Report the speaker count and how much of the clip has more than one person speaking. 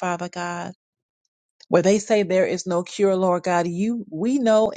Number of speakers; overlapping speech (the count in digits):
1, no overlap